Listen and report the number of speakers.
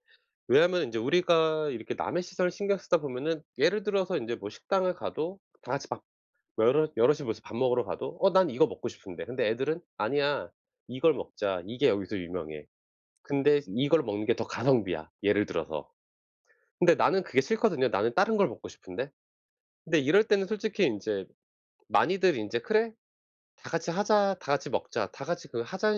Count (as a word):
one